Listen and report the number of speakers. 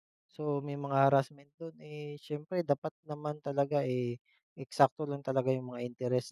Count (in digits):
1